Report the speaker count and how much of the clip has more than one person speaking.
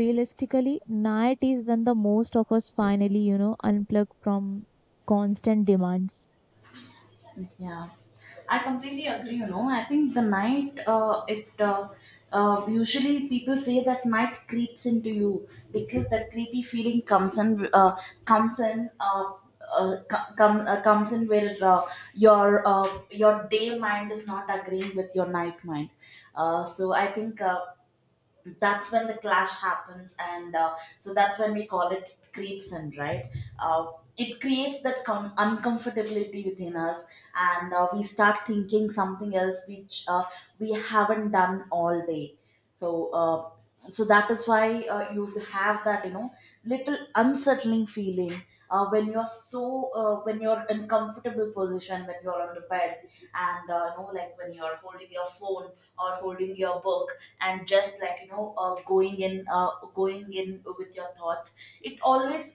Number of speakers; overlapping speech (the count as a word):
two, under 1%